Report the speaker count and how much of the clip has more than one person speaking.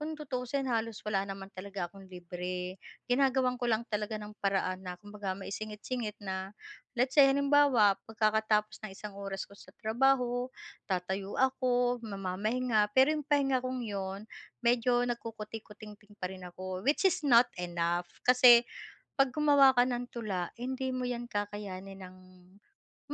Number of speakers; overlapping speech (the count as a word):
one, no overlap